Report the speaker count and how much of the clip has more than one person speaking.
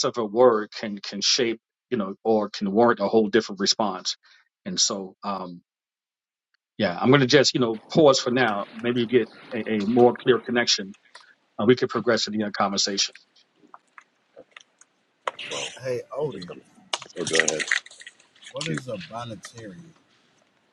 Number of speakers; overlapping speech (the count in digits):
3, about 1%